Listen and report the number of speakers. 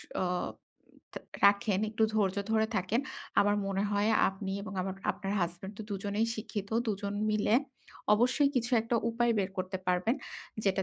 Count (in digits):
1